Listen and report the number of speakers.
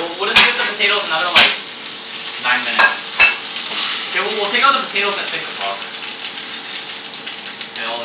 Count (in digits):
1